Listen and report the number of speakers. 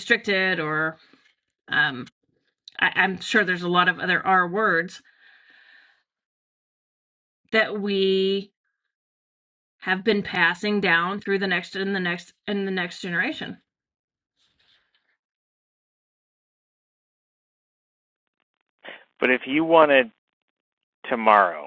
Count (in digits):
2